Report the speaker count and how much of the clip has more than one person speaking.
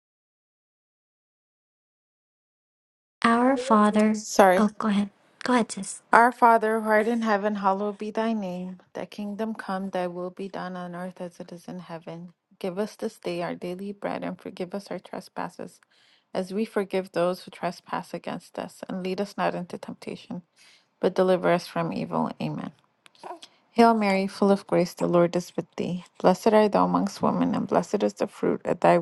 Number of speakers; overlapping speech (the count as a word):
two, about 1%